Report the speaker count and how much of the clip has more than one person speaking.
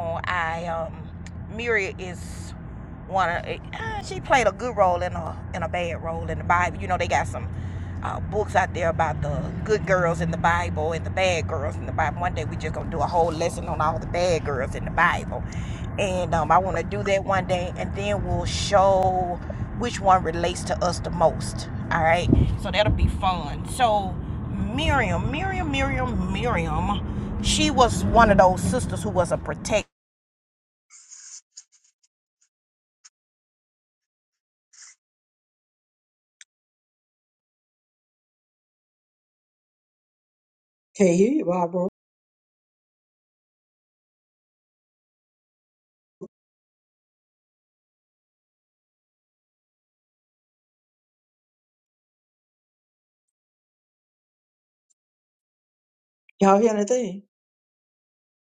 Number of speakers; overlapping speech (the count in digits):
2, no overlap